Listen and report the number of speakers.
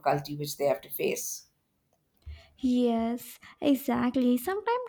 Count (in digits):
2